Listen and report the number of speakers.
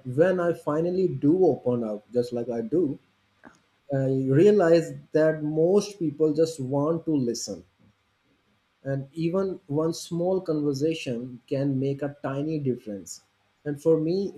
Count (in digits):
1